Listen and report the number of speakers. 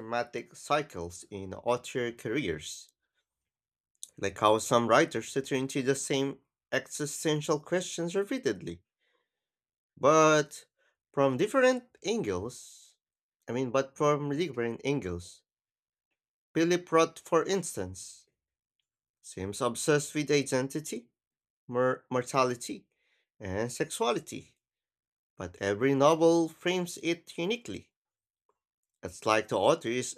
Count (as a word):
one